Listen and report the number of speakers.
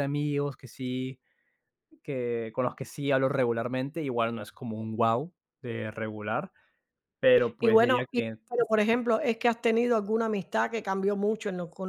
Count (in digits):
2